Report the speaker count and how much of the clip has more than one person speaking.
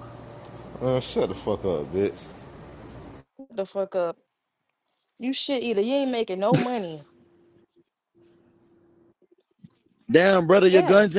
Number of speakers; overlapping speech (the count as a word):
three, about 3%